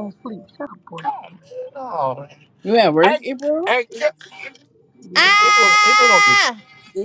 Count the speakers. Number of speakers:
3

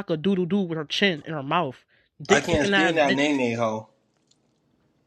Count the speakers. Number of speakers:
2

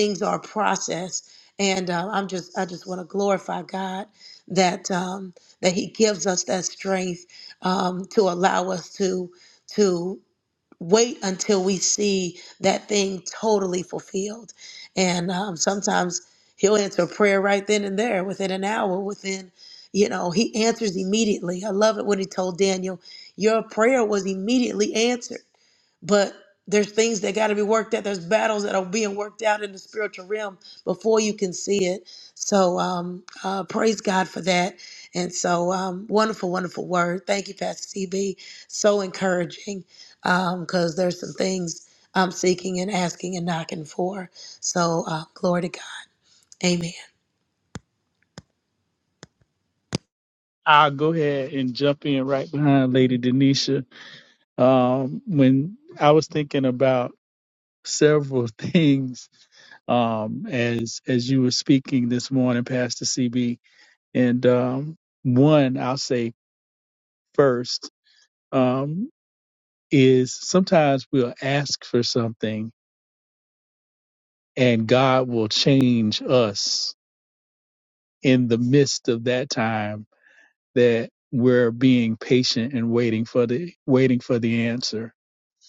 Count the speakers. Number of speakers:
2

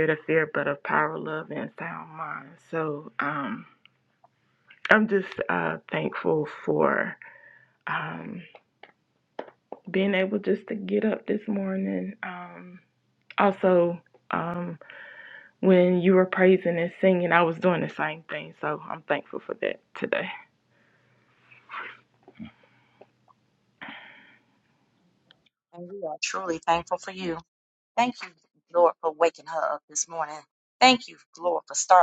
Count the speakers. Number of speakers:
2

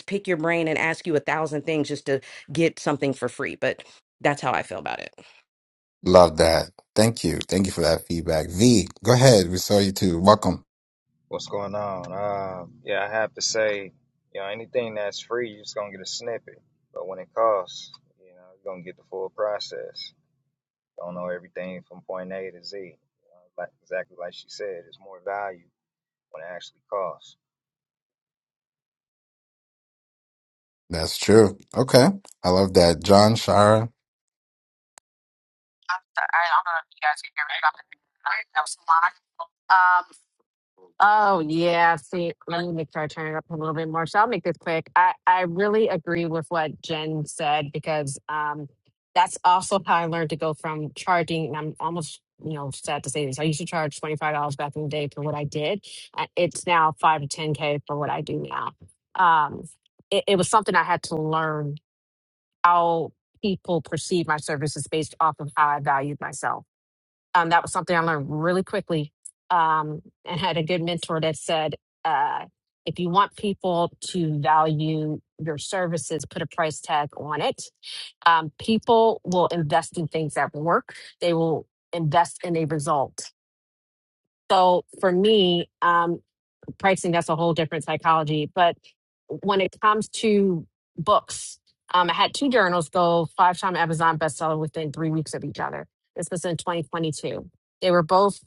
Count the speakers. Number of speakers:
4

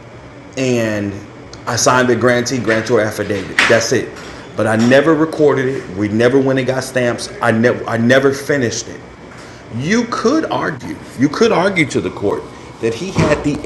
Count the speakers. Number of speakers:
1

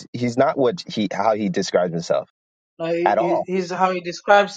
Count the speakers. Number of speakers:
2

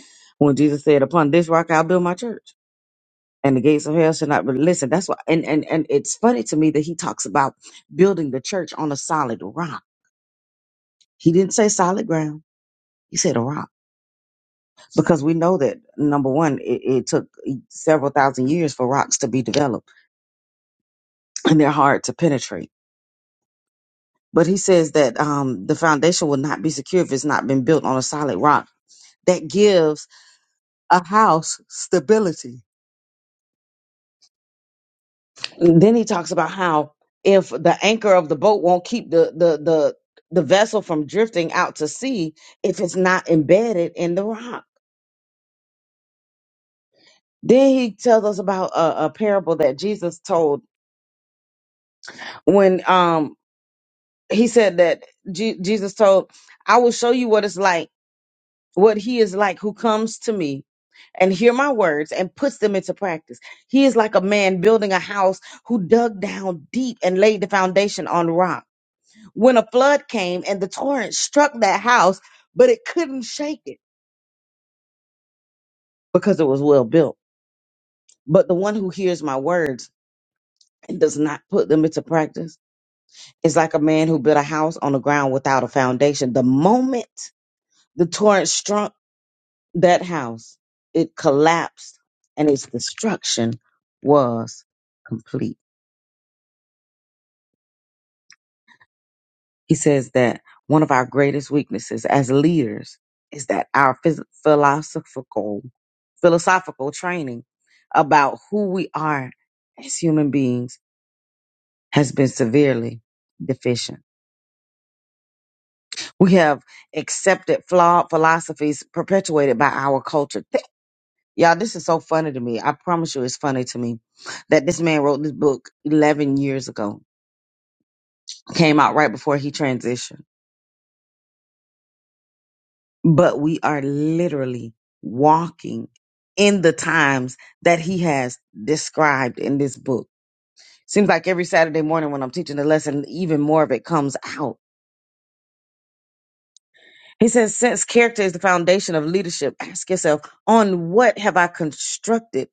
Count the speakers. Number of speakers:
1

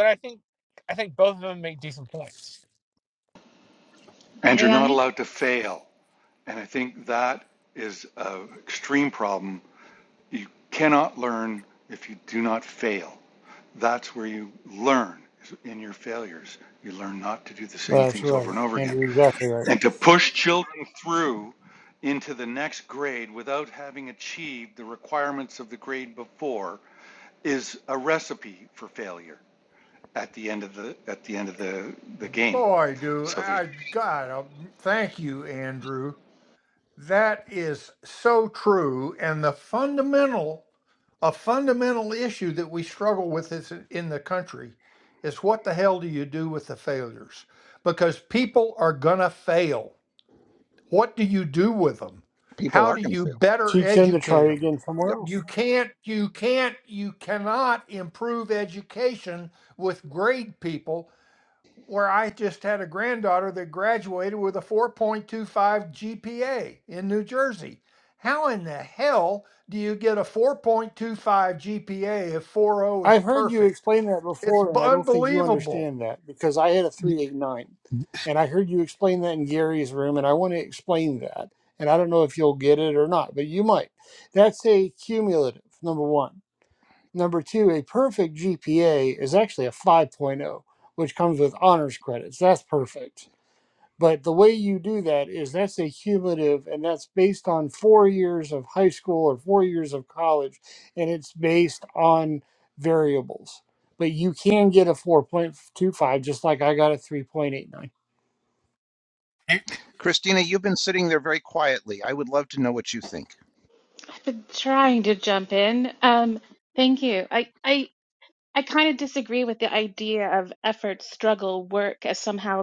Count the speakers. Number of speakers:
6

